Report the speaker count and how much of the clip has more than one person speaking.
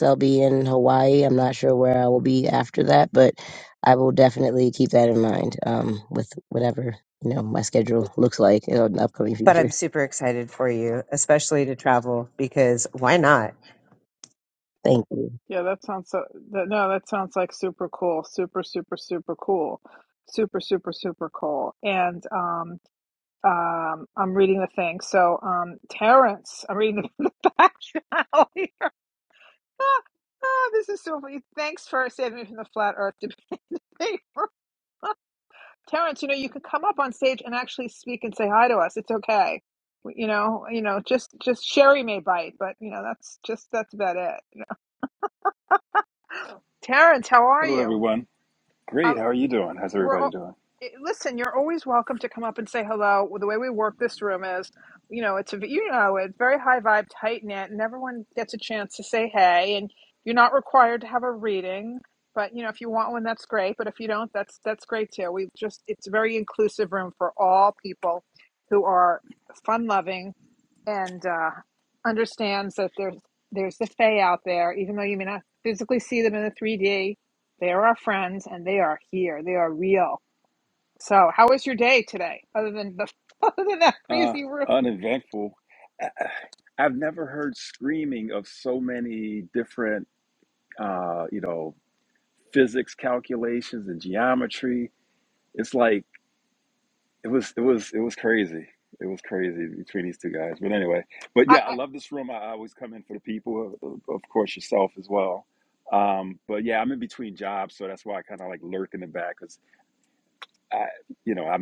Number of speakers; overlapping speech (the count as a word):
four, about 2%